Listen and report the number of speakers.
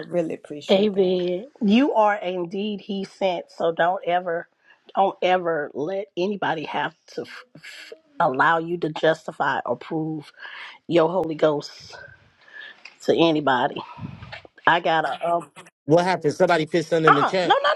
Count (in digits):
3